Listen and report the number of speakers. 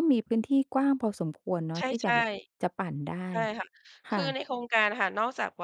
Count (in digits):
2